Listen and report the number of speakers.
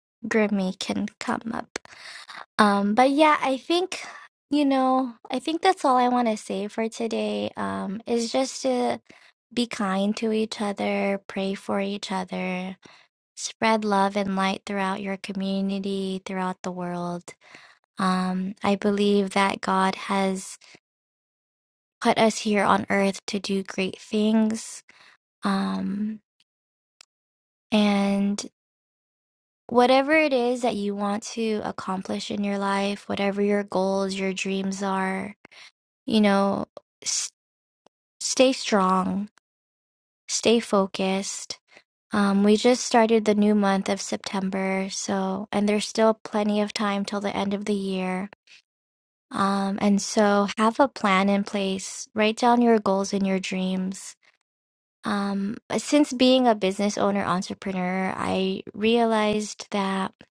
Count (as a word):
one